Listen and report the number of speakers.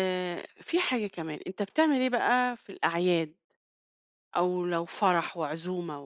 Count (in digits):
1